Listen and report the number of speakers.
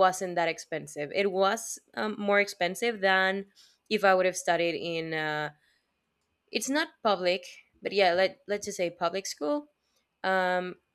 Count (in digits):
1